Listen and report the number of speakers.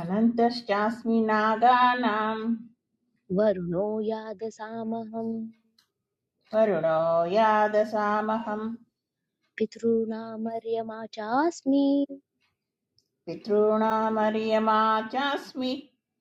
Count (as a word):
two